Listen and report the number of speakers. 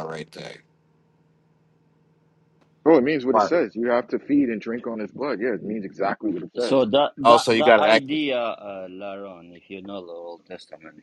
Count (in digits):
3